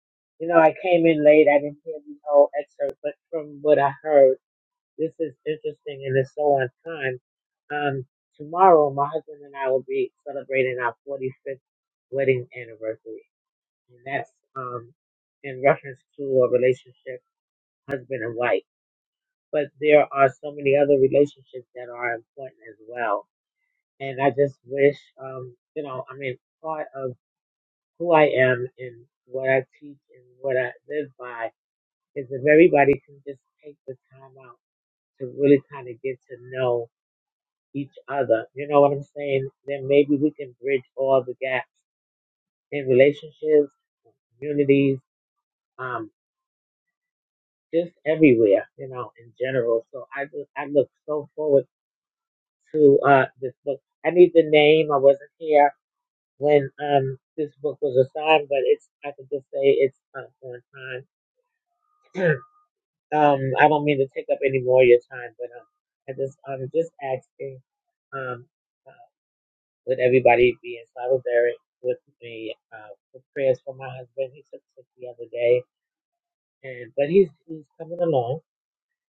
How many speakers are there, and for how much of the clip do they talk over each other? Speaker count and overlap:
one, no overlap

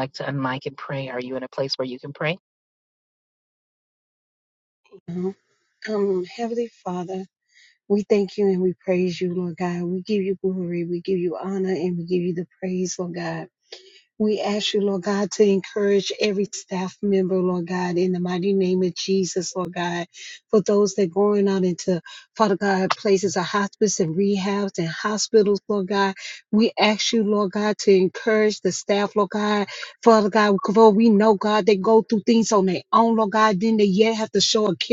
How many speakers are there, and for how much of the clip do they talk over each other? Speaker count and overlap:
two, no overlap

